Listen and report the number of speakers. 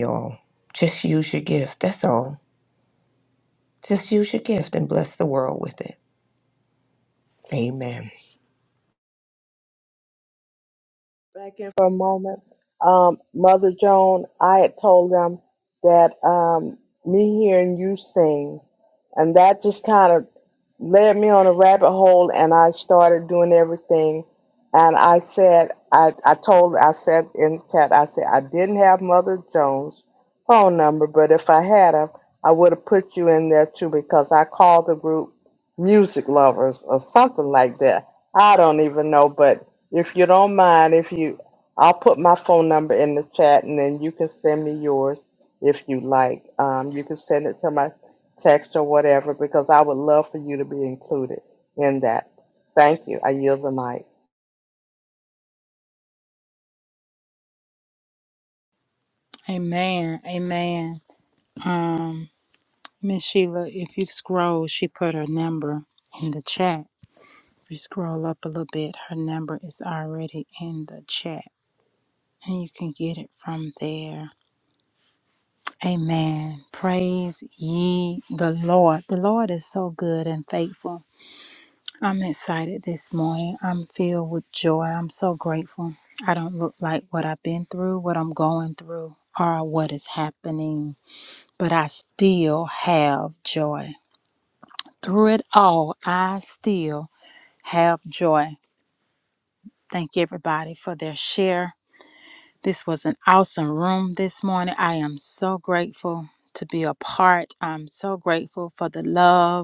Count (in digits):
3